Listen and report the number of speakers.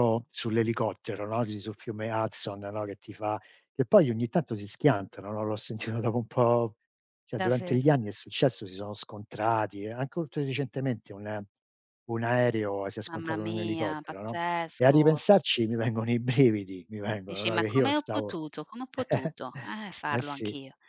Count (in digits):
2